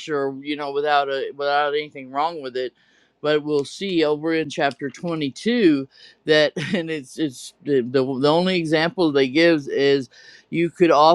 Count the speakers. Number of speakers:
one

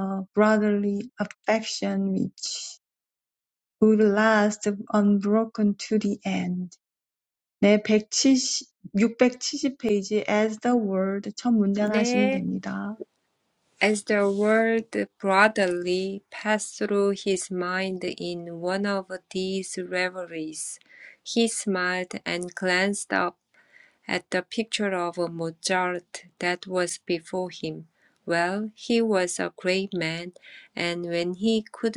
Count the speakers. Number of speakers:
two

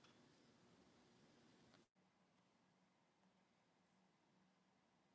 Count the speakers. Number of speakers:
zero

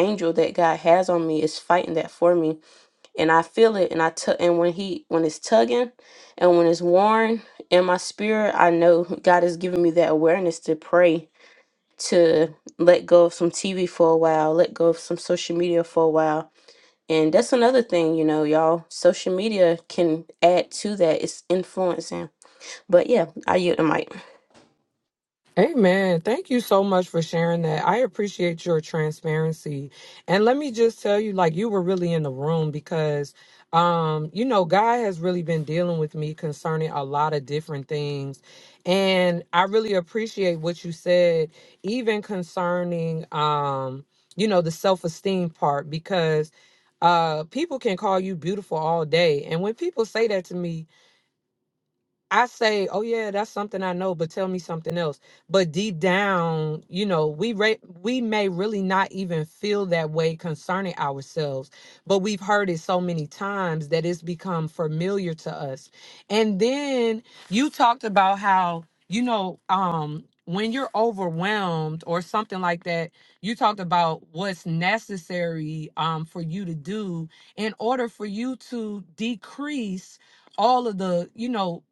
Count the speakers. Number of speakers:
two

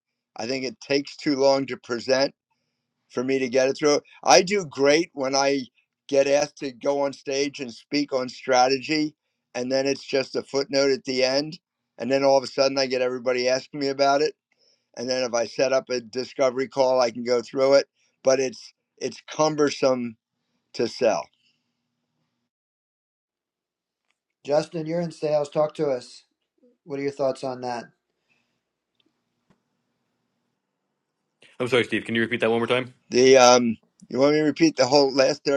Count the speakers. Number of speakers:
three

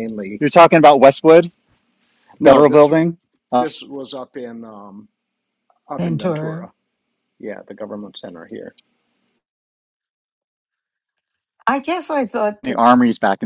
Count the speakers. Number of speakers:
three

